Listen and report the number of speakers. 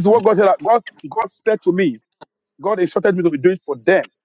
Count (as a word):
one